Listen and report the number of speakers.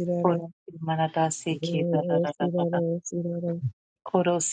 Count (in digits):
2